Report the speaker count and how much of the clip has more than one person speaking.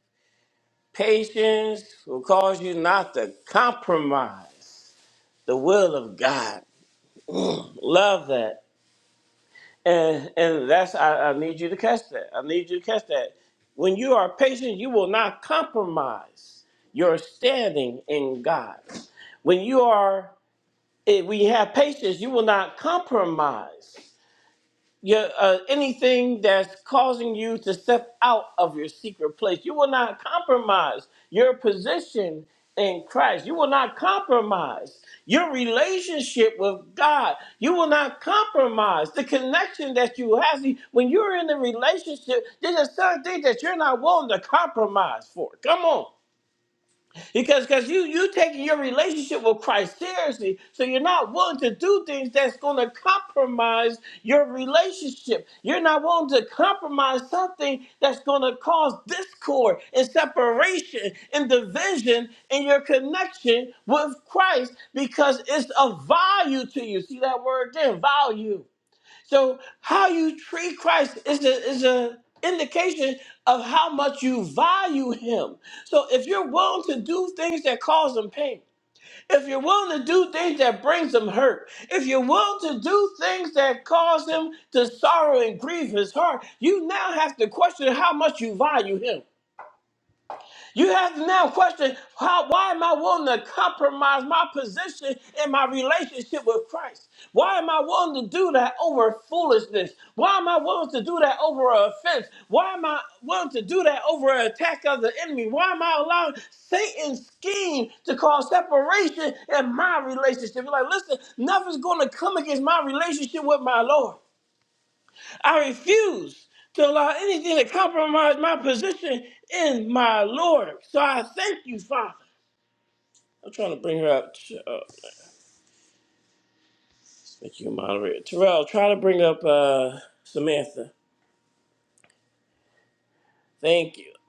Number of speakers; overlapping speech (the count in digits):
1, no overlap